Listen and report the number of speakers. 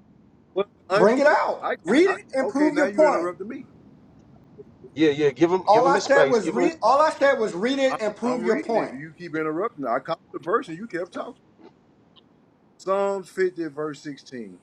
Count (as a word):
three